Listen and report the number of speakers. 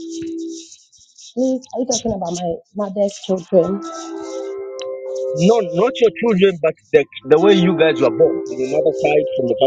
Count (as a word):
two